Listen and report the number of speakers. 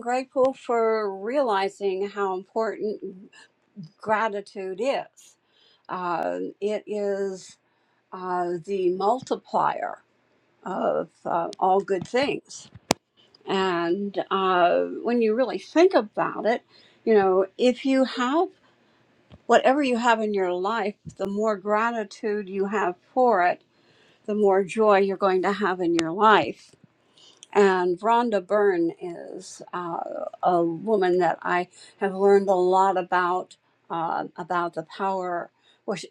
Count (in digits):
1